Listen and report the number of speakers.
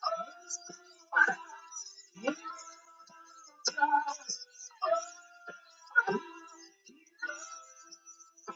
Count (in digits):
0